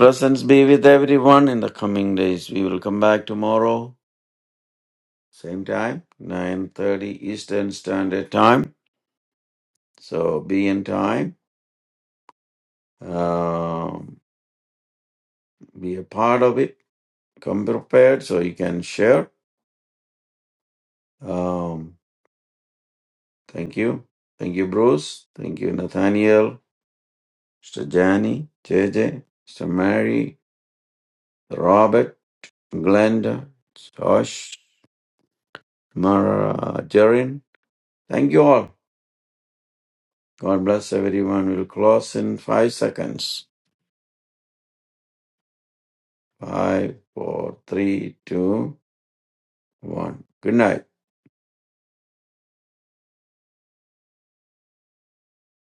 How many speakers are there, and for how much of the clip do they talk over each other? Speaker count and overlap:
1, no overlap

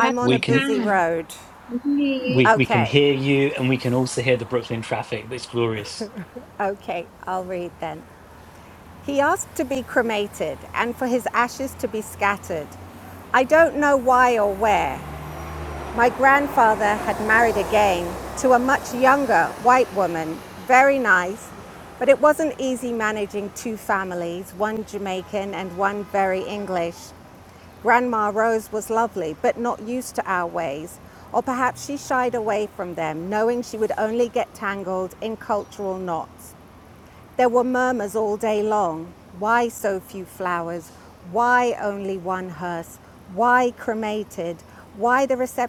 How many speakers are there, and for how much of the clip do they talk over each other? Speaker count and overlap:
3, about 4%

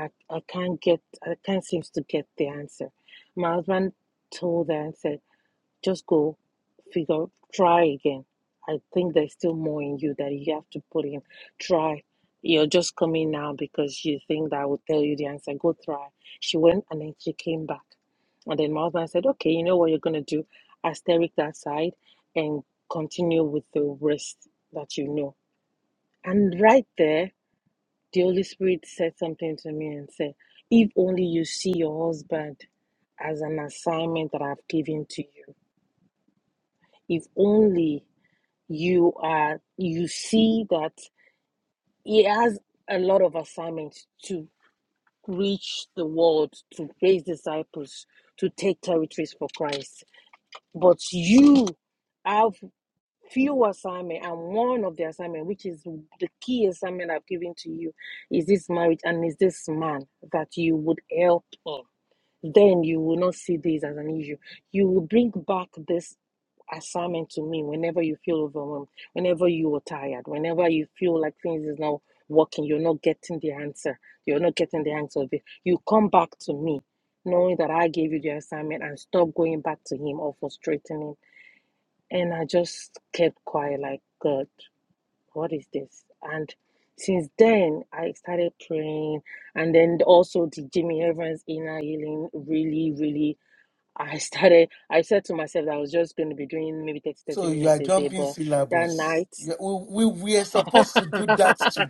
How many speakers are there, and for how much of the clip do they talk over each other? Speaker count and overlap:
2, about 1%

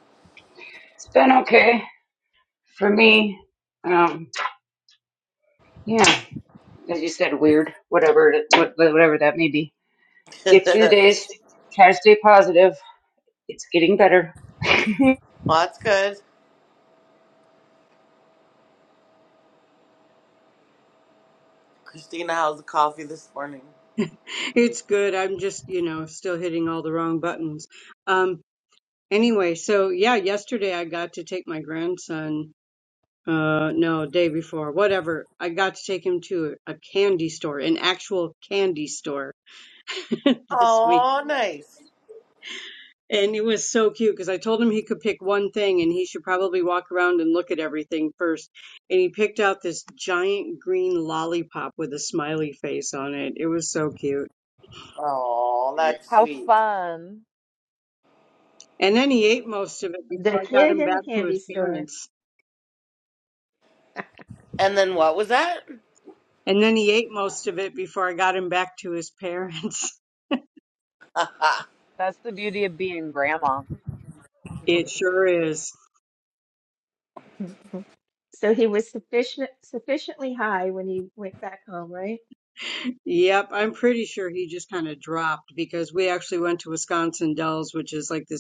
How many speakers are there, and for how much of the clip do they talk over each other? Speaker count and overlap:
5, about 3%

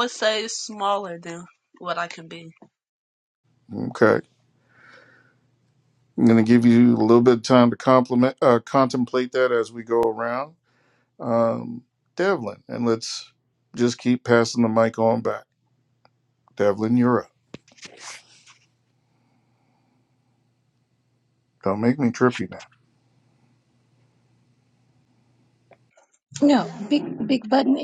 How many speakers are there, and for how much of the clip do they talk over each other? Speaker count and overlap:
3, no overlap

